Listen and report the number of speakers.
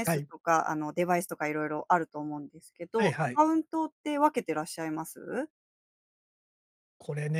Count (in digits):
2